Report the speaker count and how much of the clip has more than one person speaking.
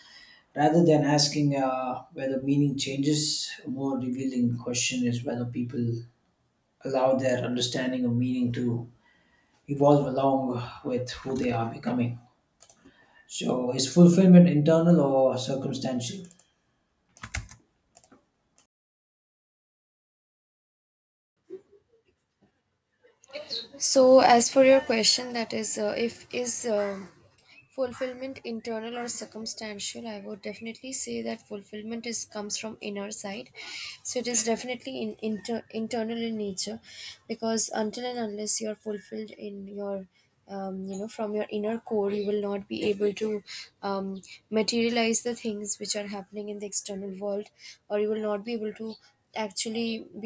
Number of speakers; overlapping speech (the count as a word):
two, no overlap